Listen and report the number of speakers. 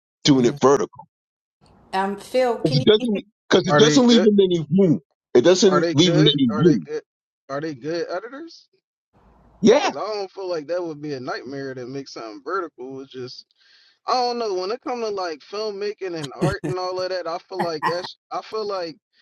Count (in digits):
3